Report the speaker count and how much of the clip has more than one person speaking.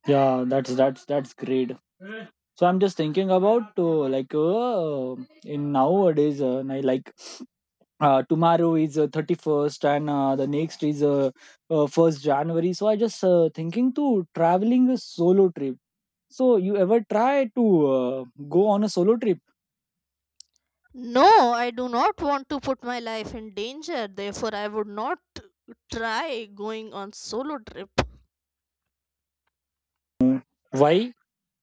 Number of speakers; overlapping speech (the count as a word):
two, no overlap